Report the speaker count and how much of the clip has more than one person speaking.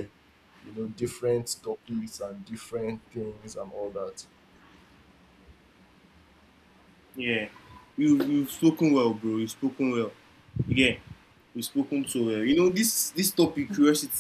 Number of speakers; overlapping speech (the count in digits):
2, no overlap